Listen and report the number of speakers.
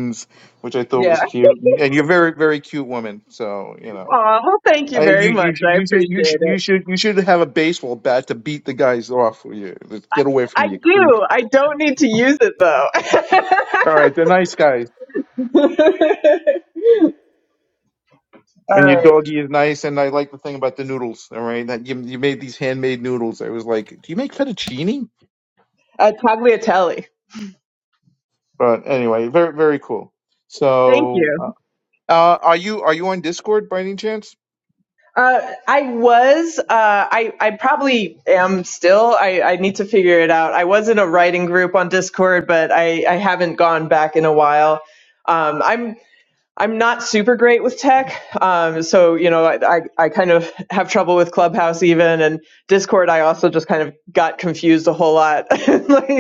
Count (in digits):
2